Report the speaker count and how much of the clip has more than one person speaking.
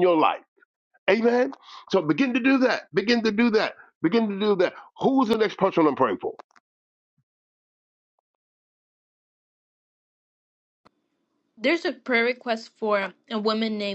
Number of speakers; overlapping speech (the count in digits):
2, no overlap